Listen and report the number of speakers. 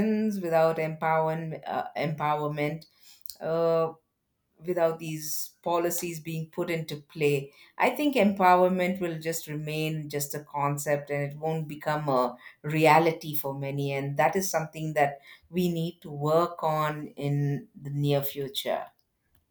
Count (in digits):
1